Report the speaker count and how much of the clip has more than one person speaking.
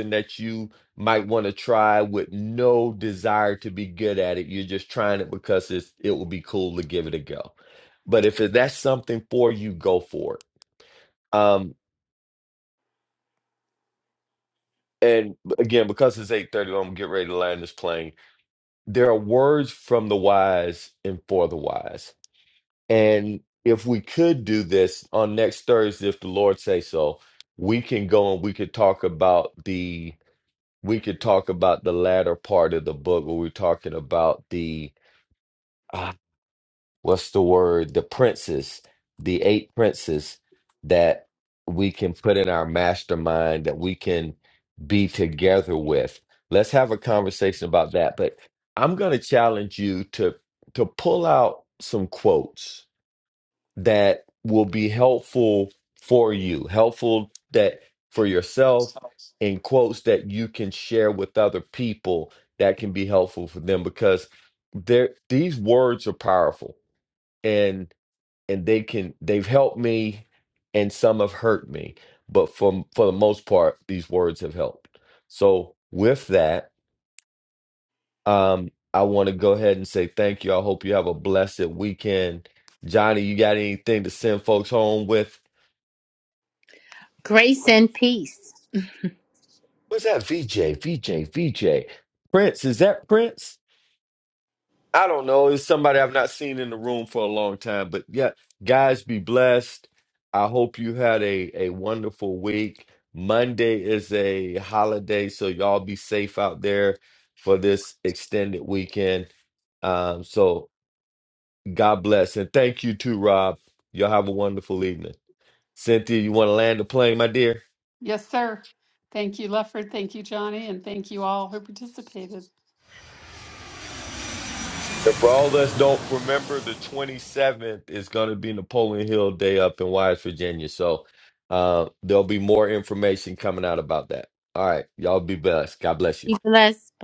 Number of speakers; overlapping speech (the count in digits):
3, under 1%